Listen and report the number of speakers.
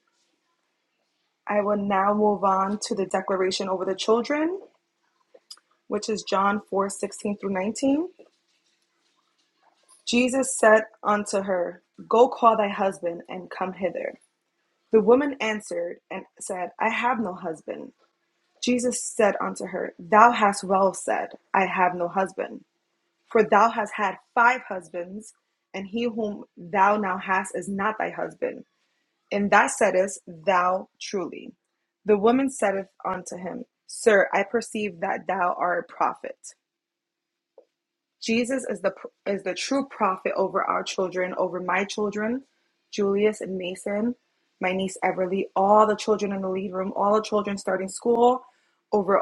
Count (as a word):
one